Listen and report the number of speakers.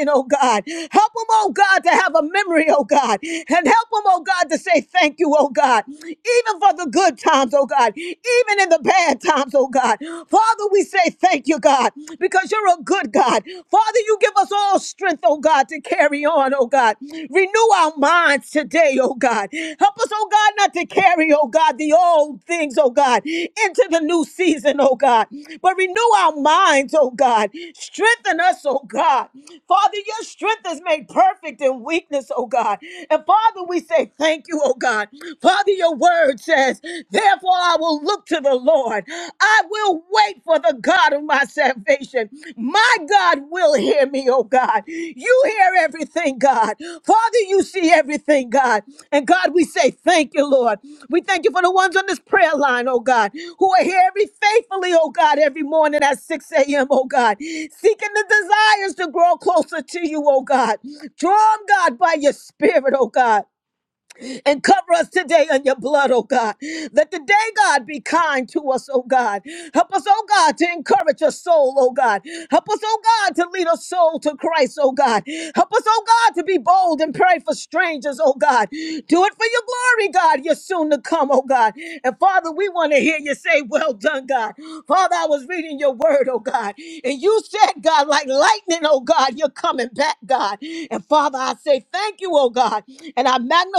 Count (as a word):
one